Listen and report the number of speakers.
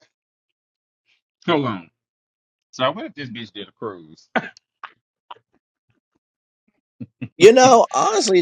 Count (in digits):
2